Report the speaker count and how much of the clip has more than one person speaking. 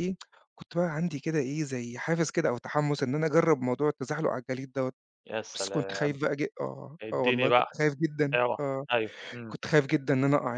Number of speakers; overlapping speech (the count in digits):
2, about 16%